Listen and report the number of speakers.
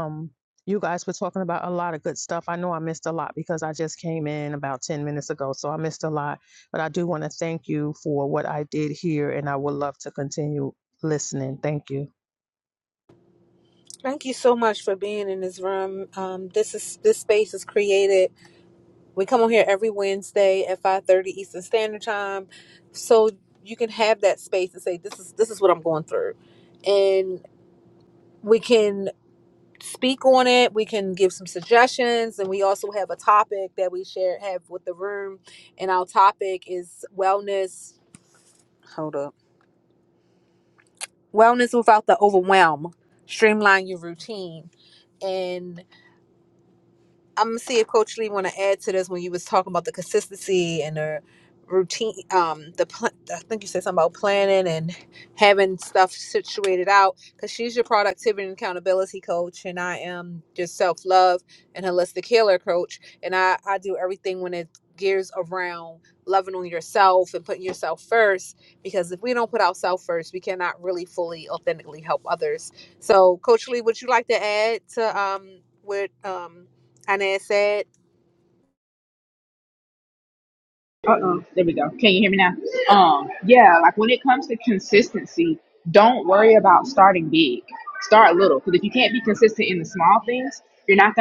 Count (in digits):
3